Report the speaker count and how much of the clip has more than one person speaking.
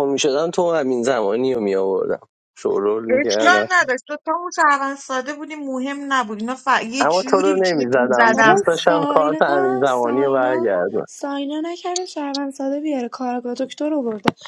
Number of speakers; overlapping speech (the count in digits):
3, about 30%